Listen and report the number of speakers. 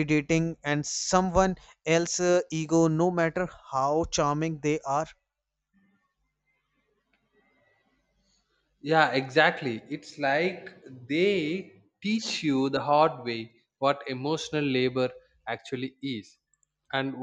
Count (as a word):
two